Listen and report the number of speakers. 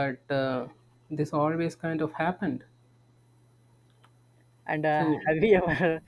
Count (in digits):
2